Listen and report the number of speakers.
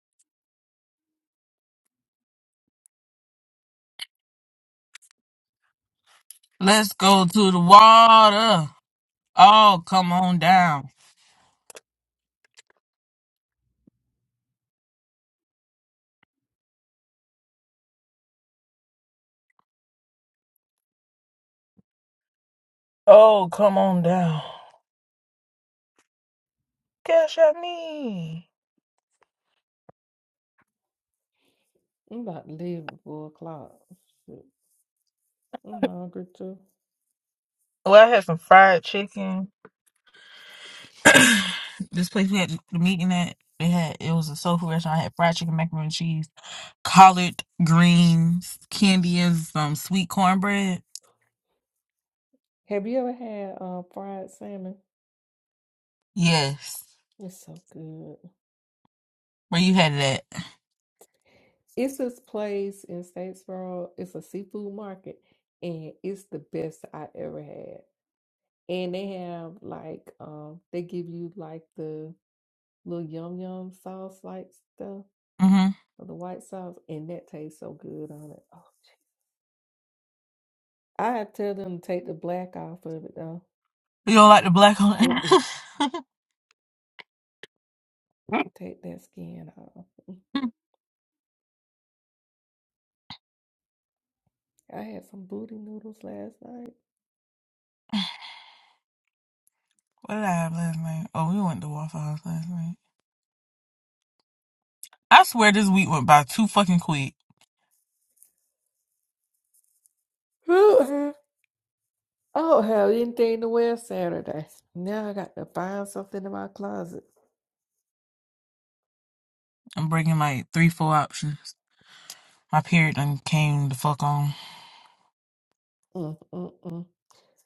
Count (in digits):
2